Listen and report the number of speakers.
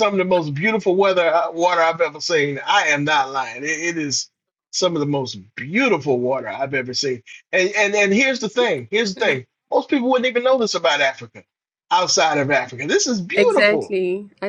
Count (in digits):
2